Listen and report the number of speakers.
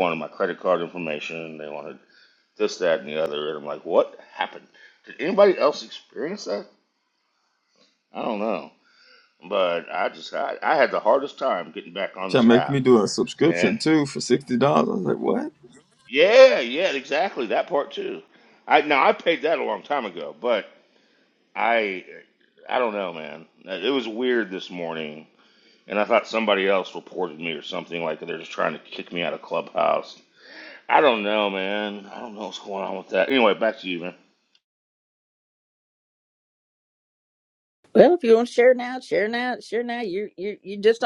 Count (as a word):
three